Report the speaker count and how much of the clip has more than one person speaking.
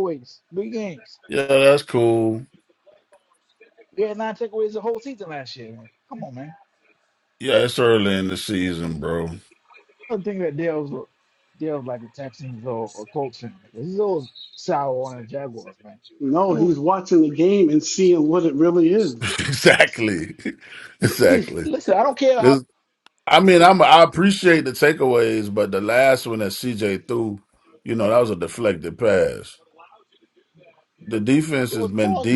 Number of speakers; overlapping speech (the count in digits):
3, about 5%